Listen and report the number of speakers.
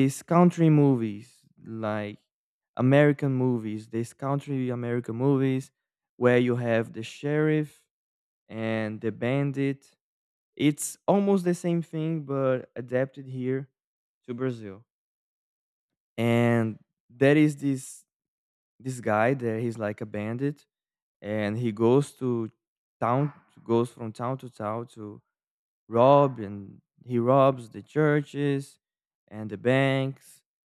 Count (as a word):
one